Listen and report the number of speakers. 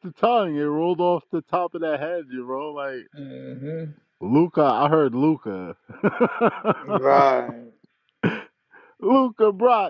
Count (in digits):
2